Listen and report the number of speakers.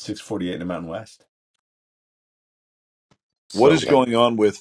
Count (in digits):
2